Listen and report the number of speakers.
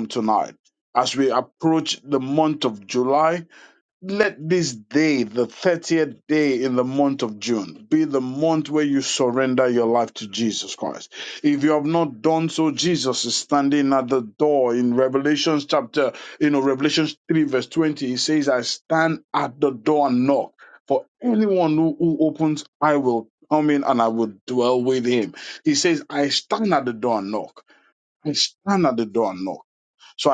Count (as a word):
one